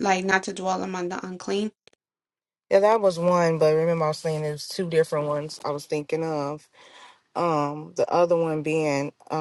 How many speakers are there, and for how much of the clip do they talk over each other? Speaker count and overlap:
2, no overlap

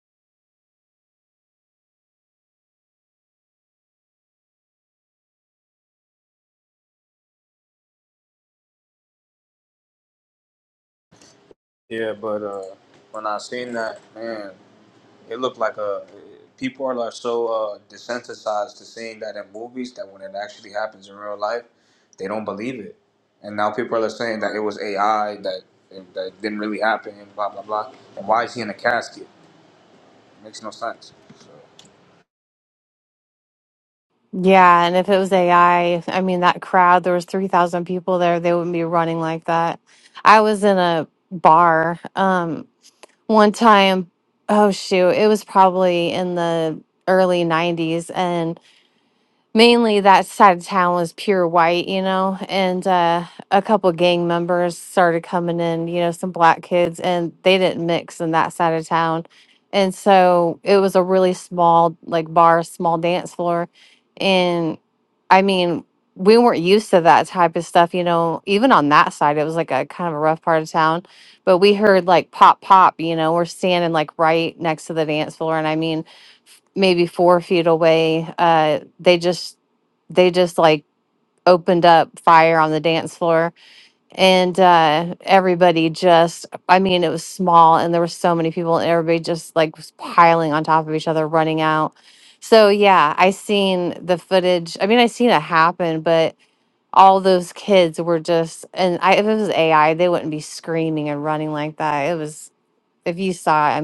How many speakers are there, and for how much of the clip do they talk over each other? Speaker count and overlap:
2, no overlap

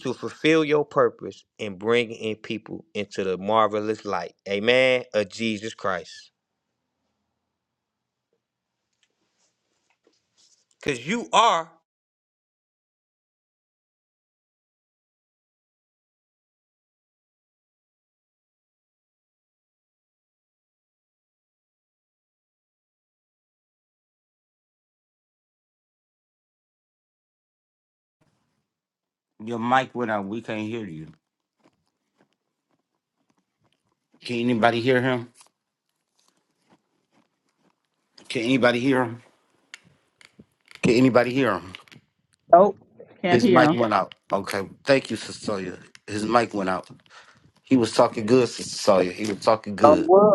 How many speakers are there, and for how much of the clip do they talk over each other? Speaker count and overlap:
3, about 1%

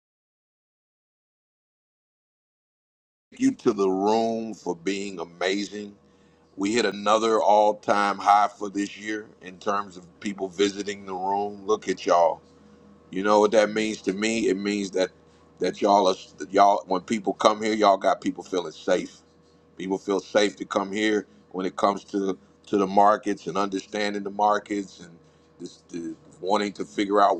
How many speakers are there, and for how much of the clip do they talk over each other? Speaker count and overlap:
1, no overlap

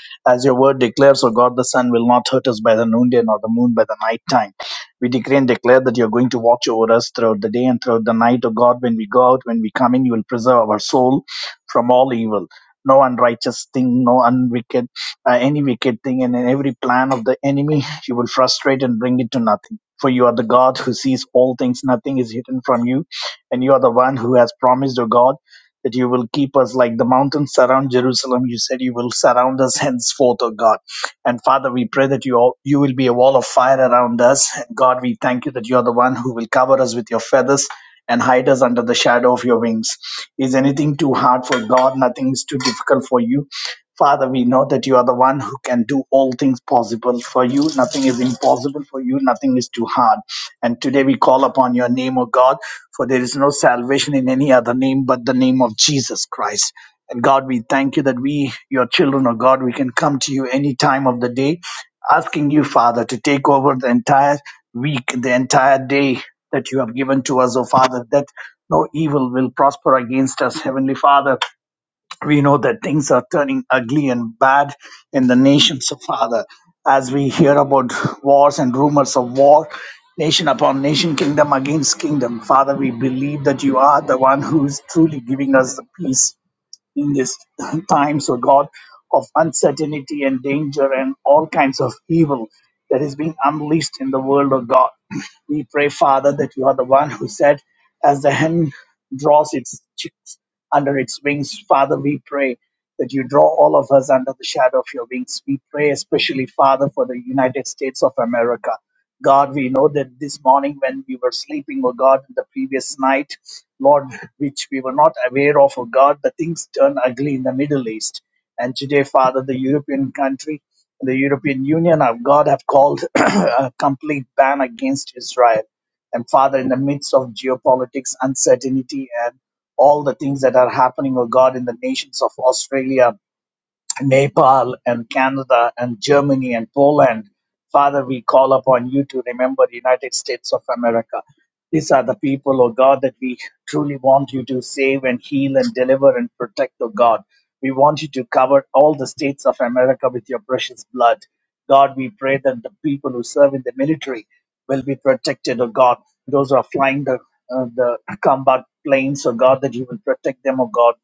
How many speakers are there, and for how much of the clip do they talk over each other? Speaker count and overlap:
1, no overlap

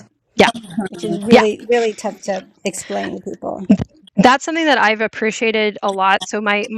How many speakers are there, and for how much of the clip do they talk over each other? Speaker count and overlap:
2, about 1%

